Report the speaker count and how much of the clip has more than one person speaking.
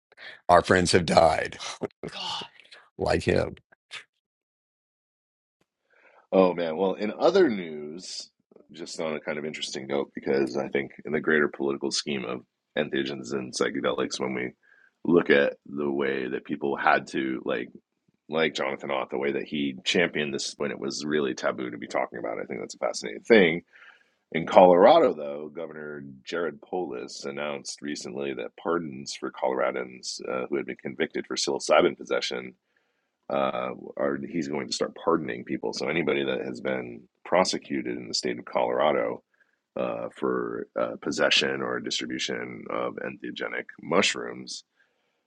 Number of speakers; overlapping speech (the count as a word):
two, no overlap